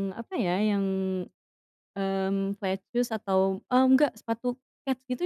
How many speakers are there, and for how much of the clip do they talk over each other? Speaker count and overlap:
one, no overlap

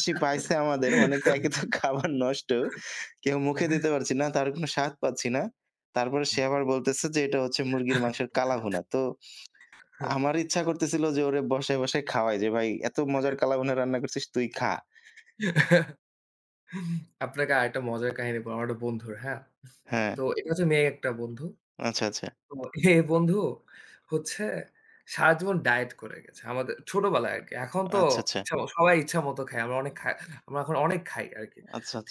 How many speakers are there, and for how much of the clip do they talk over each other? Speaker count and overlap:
two, under 1%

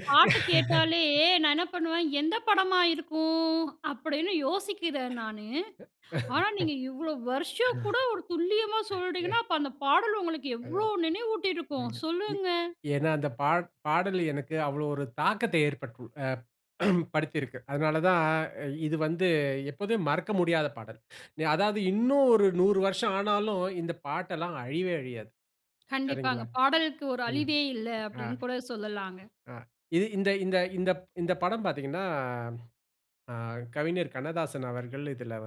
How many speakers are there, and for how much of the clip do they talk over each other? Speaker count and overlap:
two, about 4%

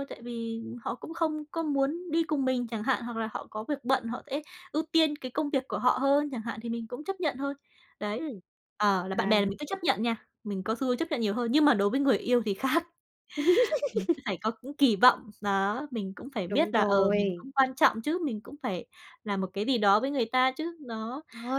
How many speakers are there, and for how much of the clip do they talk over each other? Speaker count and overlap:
two, about 6%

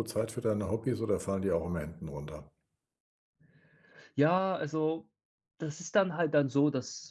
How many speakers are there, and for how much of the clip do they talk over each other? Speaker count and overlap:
two, no overlap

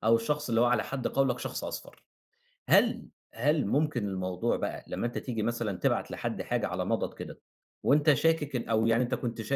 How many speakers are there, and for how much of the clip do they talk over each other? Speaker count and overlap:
one, no overlap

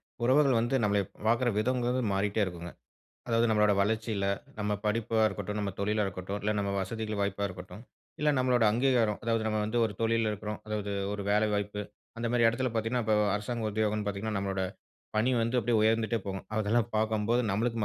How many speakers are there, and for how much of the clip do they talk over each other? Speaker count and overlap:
one, no overlap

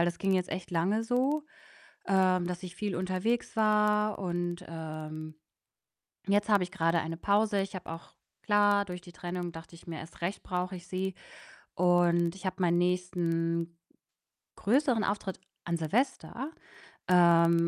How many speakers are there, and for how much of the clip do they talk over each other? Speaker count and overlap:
one, no overlap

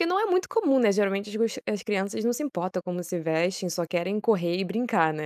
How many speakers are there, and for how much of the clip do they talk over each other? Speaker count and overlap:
one, no overlap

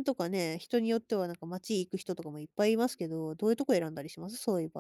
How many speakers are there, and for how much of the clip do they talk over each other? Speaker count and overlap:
one, no overlap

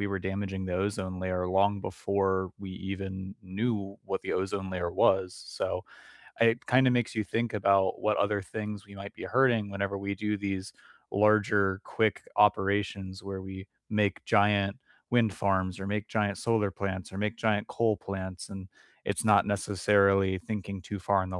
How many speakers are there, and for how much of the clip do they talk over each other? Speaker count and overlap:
one, no overlap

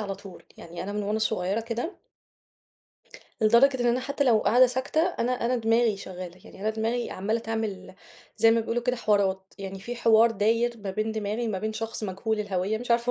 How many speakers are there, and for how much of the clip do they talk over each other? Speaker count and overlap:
one, no overlap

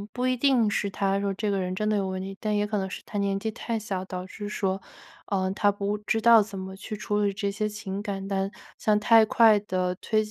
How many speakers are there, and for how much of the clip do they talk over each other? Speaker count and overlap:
one, no overlap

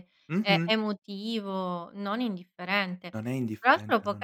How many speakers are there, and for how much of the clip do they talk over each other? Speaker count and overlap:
two, about 20%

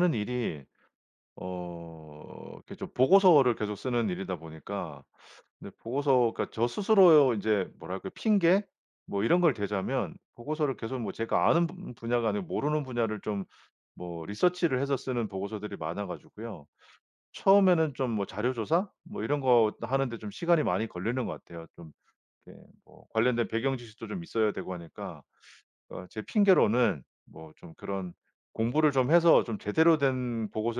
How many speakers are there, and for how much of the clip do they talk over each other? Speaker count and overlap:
one, no overlap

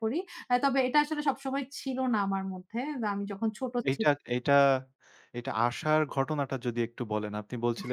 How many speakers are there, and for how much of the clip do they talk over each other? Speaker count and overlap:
two, about 5%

